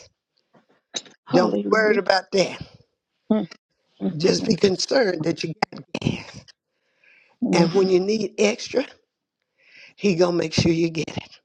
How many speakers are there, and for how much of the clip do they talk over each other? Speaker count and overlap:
2, about 9%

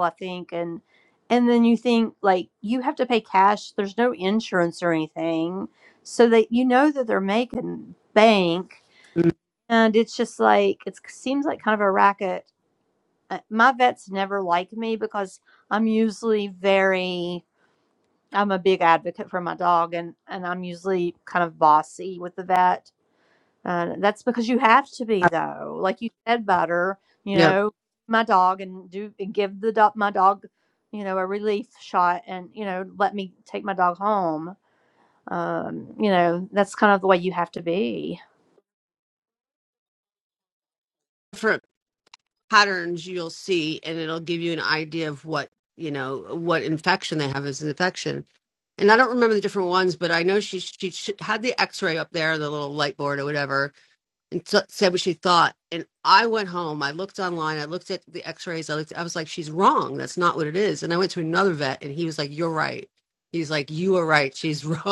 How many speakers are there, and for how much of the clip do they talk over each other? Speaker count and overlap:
2, under 1%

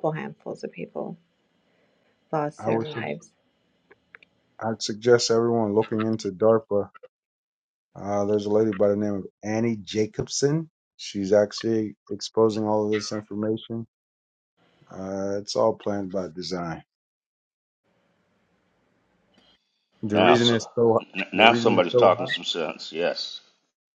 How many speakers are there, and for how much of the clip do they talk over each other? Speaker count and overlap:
3, about 8%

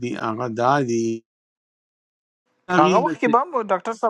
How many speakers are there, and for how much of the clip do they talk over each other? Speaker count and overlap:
2, about 14%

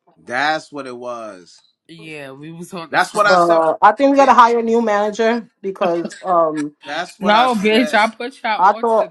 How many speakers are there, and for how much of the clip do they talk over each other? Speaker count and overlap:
3, about 30%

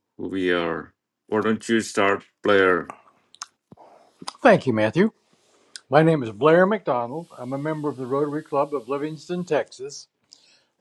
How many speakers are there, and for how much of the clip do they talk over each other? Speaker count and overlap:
2, no overlap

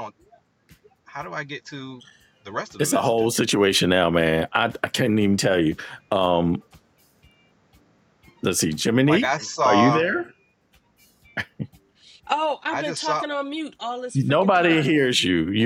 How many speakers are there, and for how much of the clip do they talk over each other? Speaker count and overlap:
3, about 16%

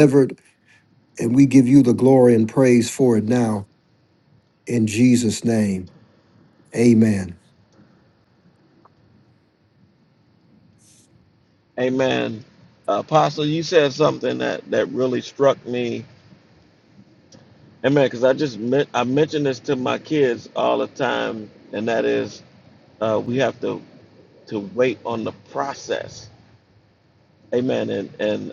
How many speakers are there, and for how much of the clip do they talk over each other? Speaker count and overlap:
2, no overlap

